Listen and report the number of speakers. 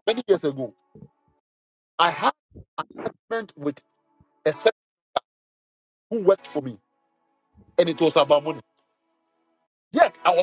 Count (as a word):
one